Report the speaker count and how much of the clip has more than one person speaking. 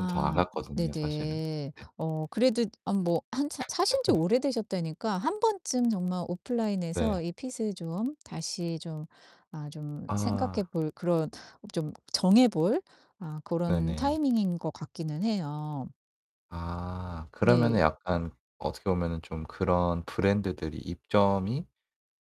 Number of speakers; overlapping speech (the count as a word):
two, about 14%